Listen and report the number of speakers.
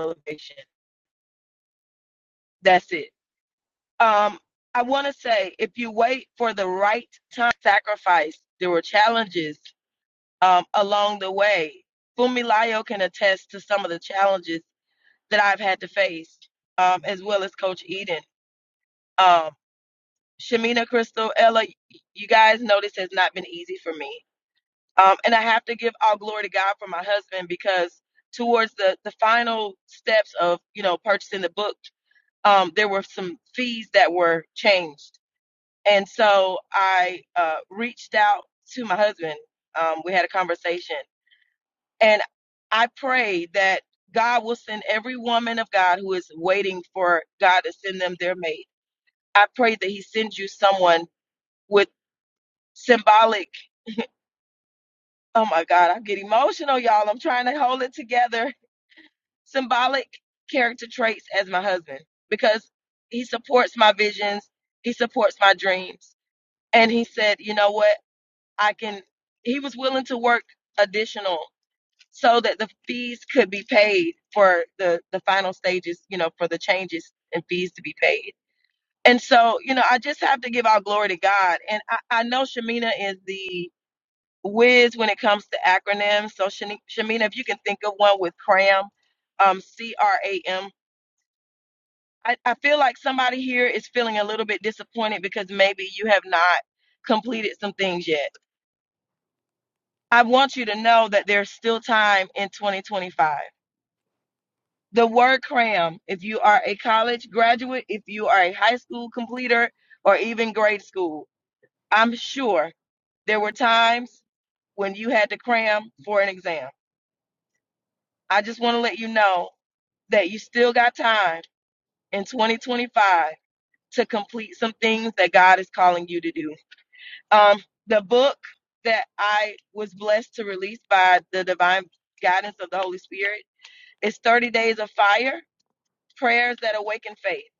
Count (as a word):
one